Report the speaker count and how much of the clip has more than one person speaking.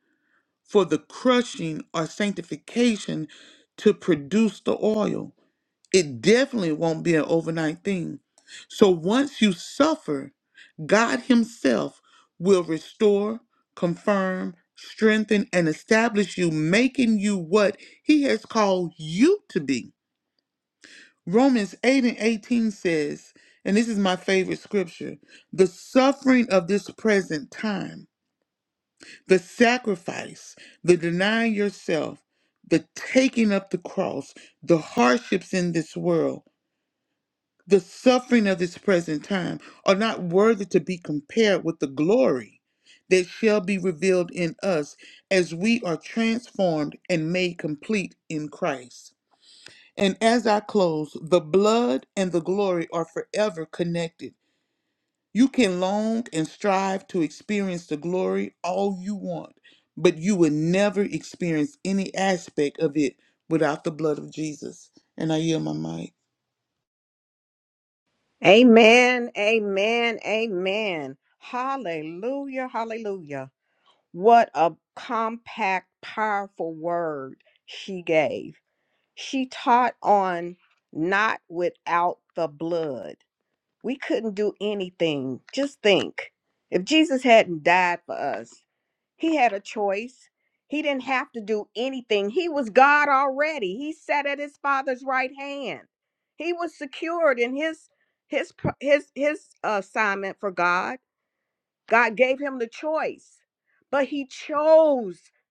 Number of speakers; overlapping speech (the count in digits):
2, no overlap